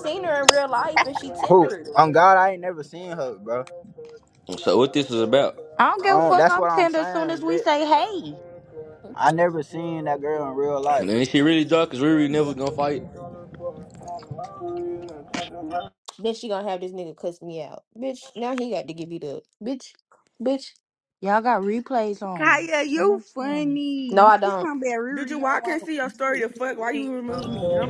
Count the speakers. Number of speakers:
6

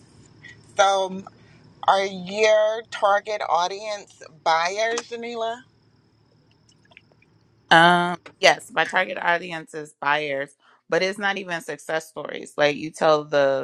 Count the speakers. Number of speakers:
2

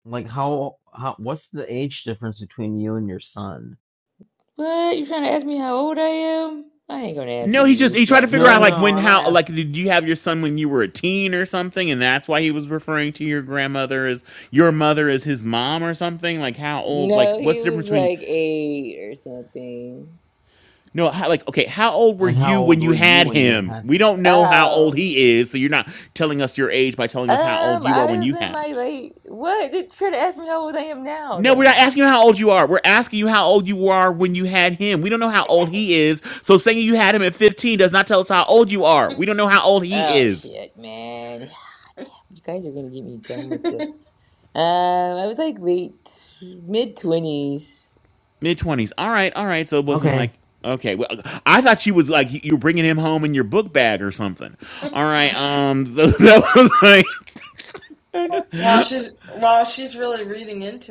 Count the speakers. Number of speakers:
4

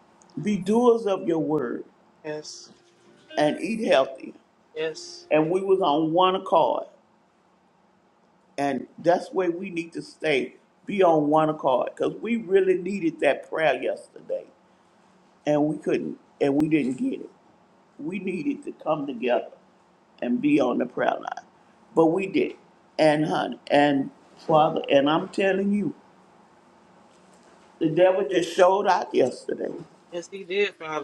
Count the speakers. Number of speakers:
2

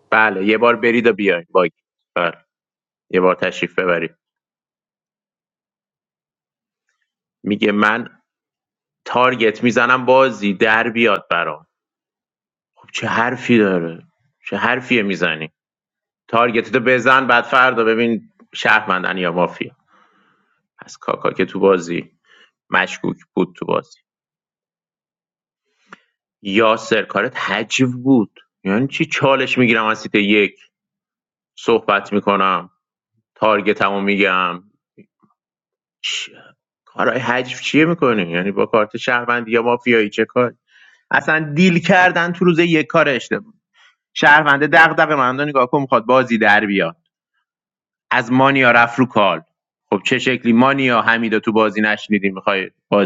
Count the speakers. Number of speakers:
1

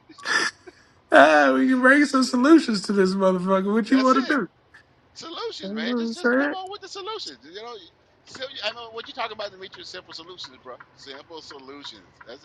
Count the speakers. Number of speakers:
2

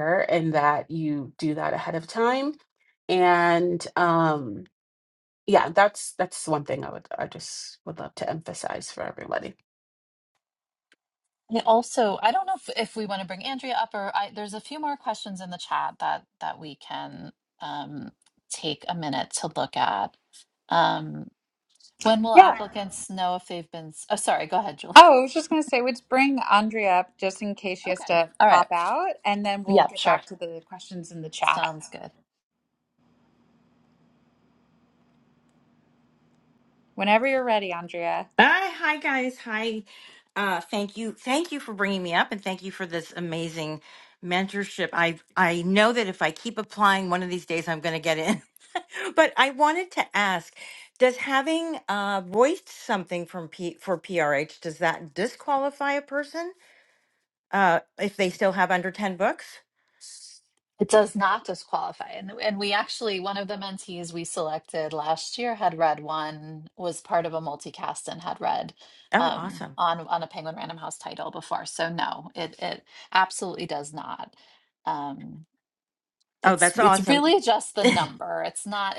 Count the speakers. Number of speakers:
4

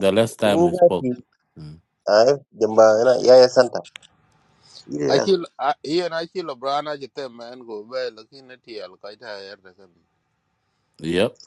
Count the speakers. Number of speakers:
3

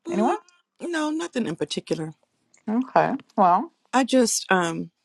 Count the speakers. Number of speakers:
2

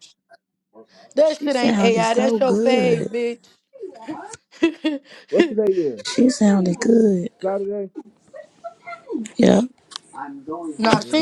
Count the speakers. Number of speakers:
3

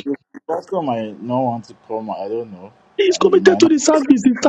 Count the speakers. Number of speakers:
2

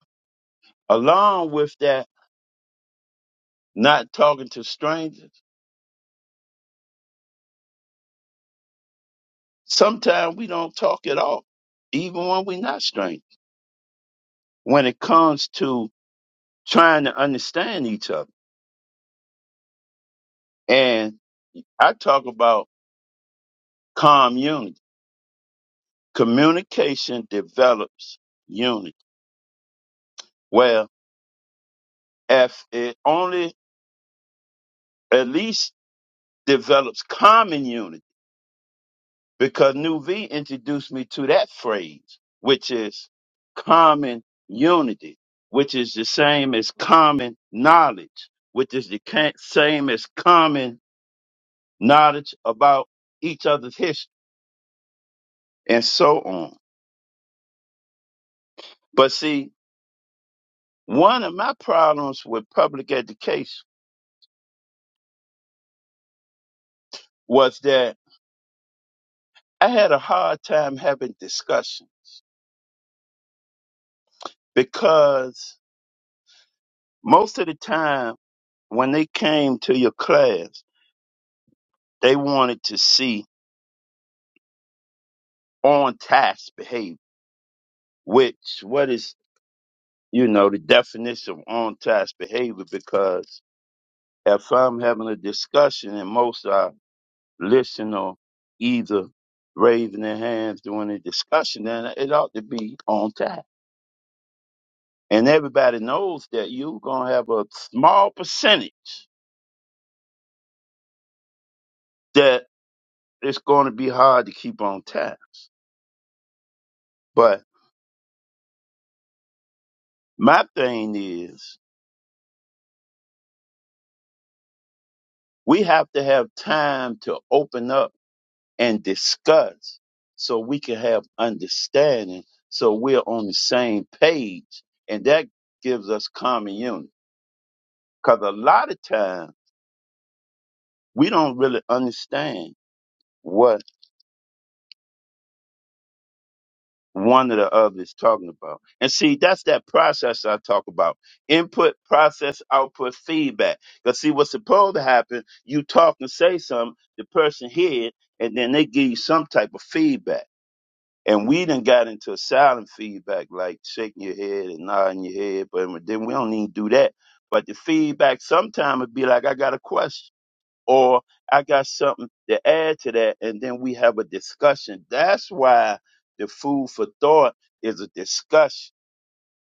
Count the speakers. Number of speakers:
1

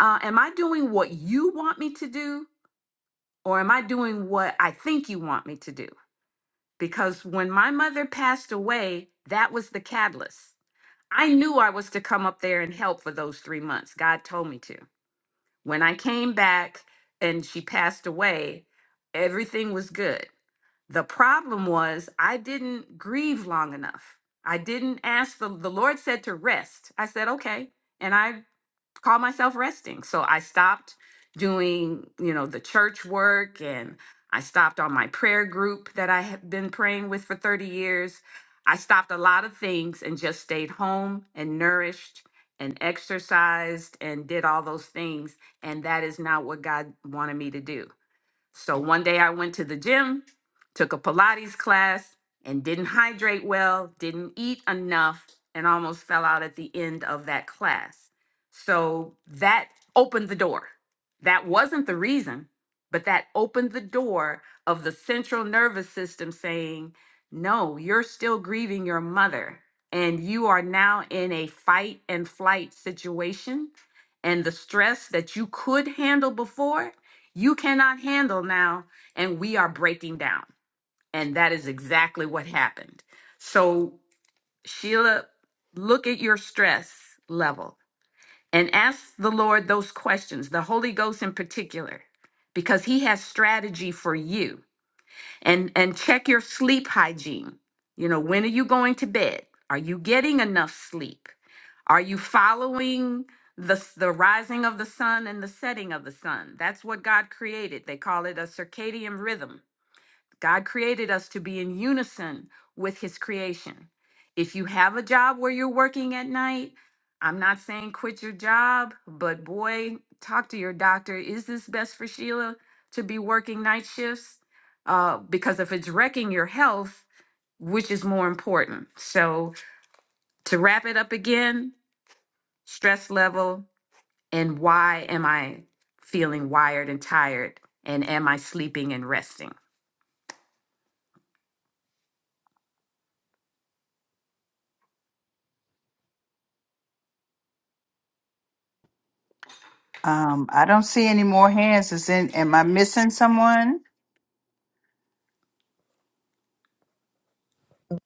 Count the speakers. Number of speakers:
2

